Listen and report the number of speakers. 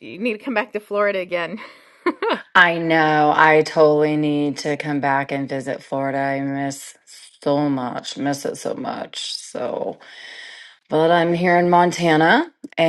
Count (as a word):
two